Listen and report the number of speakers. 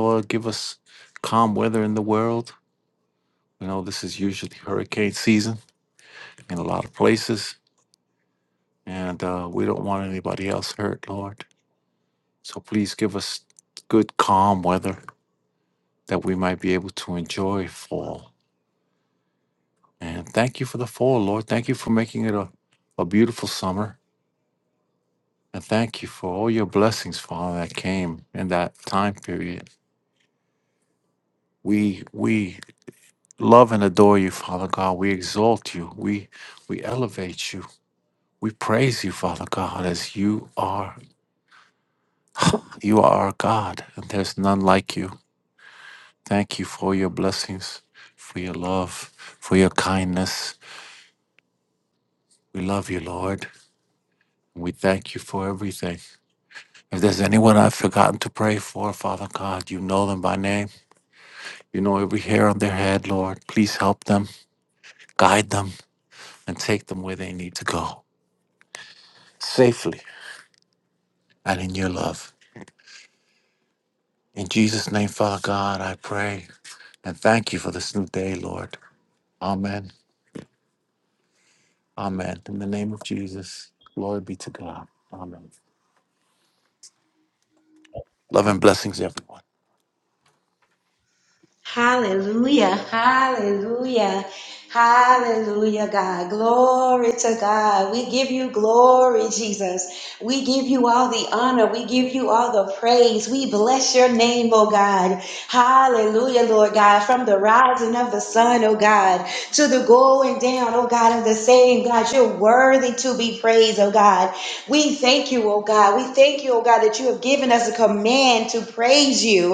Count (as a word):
two